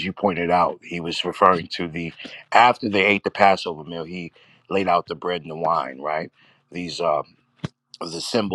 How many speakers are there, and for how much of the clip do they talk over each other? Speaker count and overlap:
1, no overlap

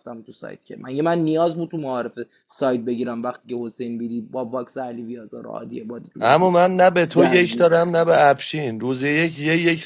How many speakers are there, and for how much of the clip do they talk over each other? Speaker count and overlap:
2, about 11%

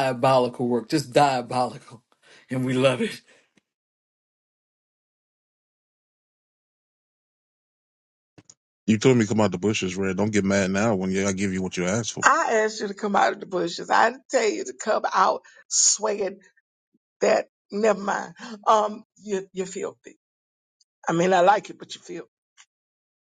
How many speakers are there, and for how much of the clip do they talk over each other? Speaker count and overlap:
3, no overlap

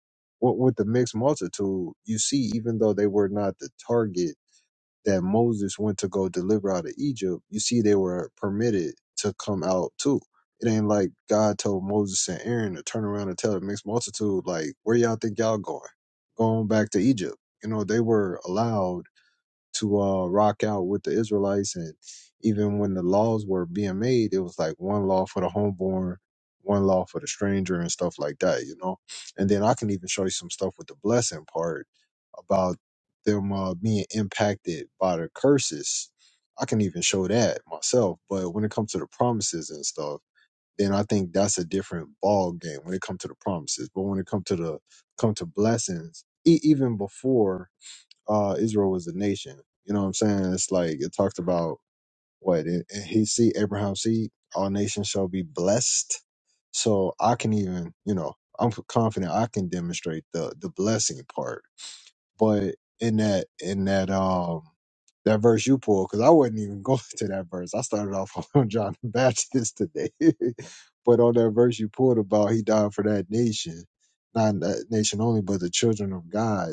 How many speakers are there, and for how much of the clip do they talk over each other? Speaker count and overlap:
1, no overlap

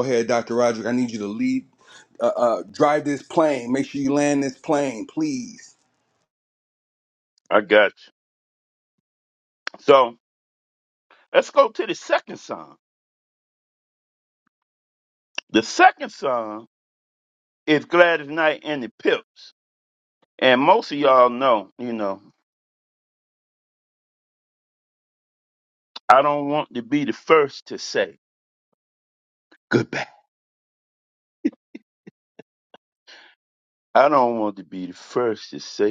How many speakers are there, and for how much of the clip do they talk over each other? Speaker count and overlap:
2, no overlap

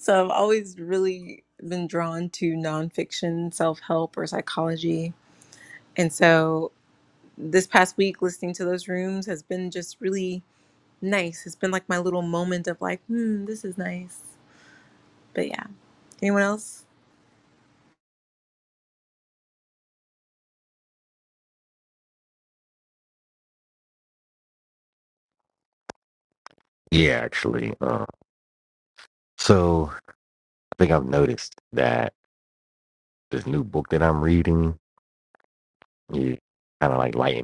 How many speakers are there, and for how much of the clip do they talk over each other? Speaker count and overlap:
2, no overlap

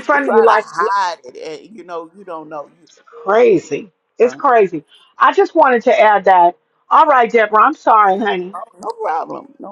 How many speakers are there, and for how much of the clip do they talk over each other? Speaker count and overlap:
2, about 12%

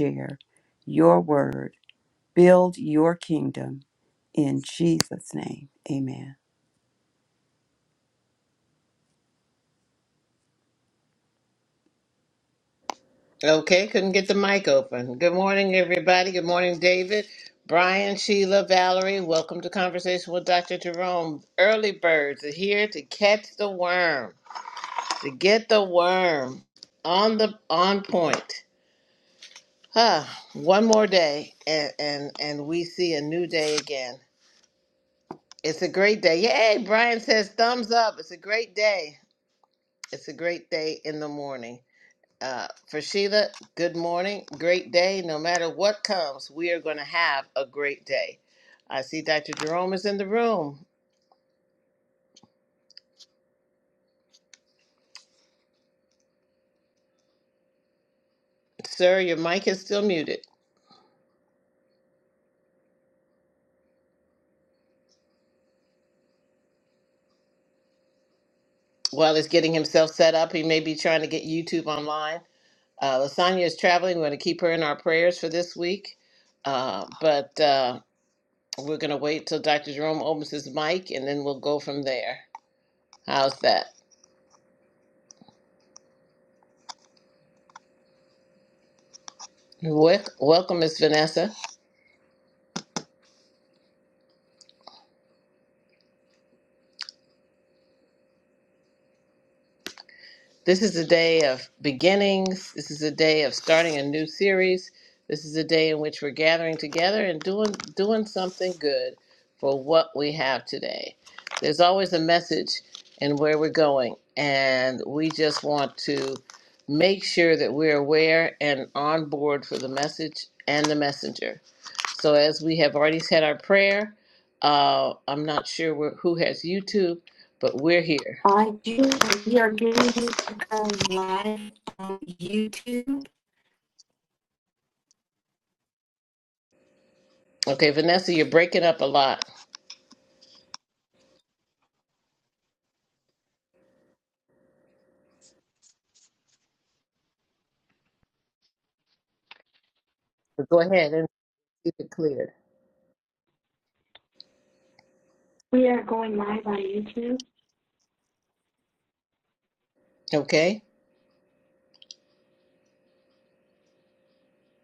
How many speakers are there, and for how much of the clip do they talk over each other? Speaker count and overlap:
3, under 1%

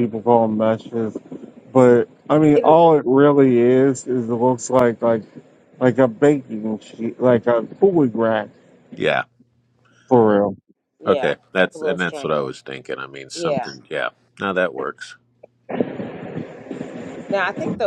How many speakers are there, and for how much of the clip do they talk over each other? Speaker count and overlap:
3, about 11%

